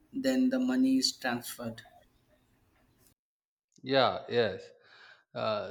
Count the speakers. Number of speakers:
2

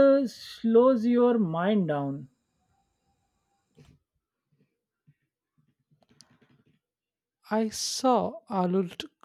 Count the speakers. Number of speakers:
2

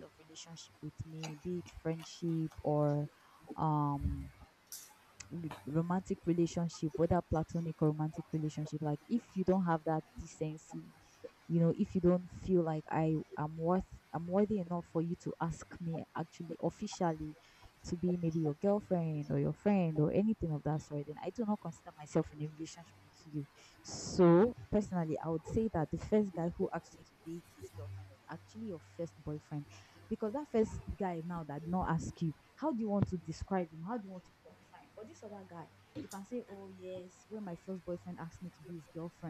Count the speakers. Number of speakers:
1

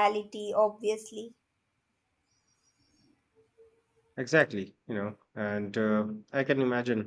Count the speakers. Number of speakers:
2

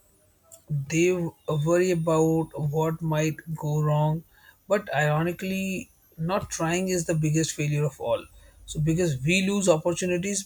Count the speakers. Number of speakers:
1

